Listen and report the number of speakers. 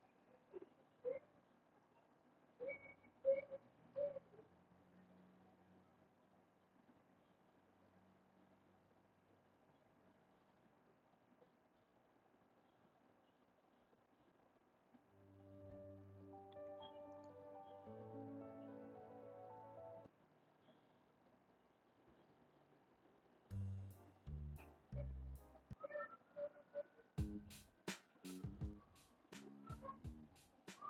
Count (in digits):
0